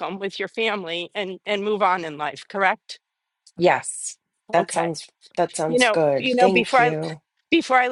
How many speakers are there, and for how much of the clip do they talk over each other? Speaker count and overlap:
two, about 20%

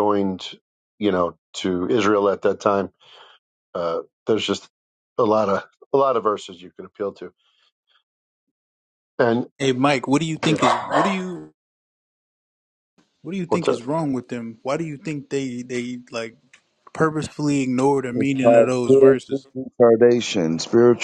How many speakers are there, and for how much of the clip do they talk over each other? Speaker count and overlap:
three, about 8%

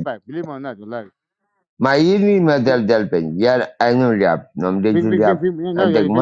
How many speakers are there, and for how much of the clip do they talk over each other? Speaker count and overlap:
two, about 16%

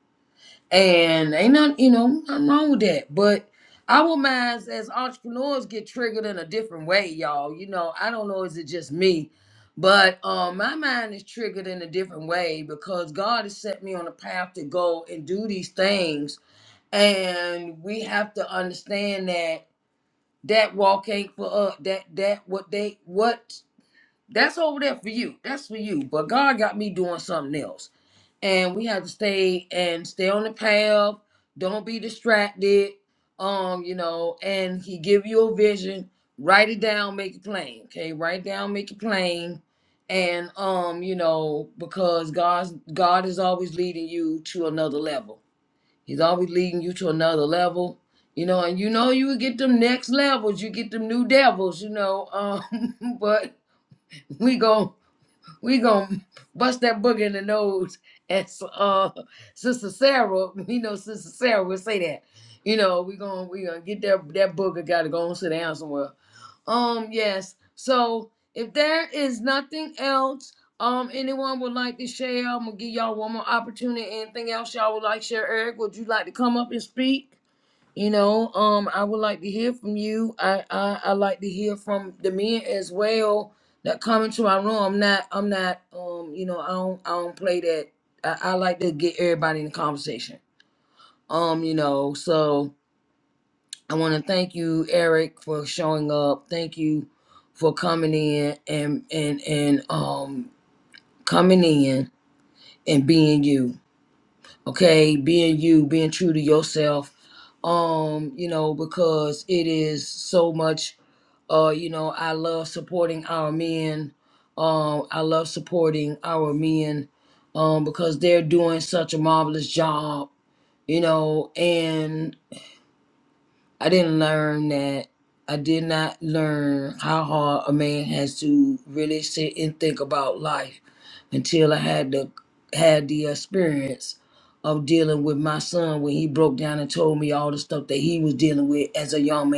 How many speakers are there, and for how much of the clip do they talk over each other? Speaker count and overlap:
one, no overlap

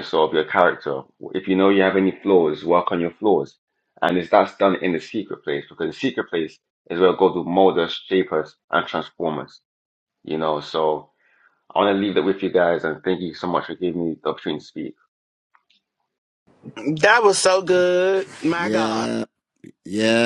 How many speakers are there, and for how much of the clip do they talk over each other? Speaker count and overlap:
three, about 3%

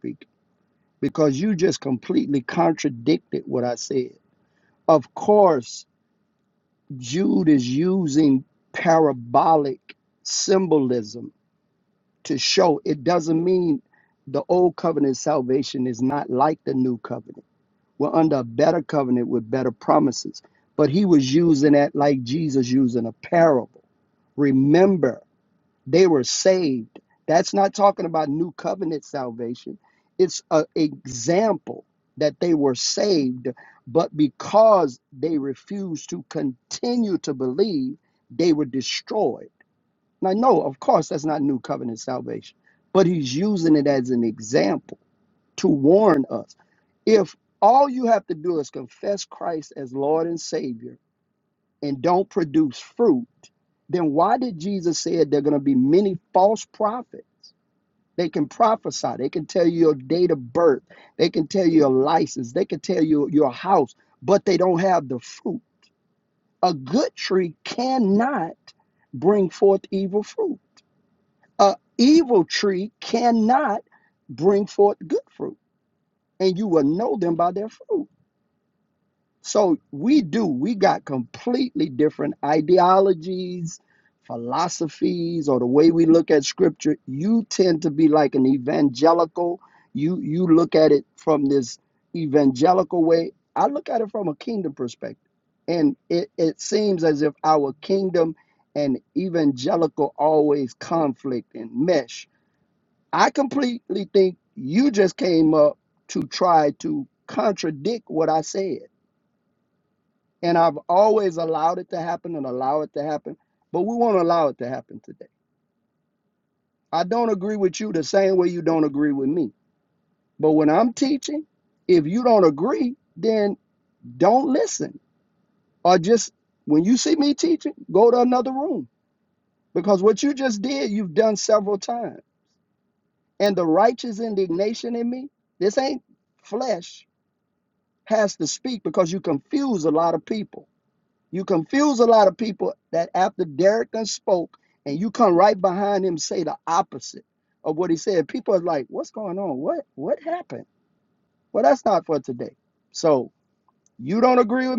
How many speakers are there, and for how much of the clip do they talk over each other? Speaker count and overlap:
one, no overlap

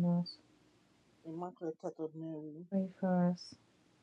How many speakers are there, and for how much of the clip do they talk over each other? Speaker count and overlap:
two, no overlap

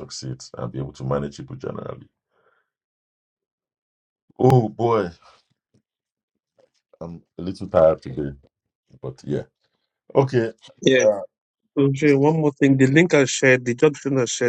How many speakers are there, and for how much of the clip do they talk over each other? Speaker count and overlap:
two, about 1%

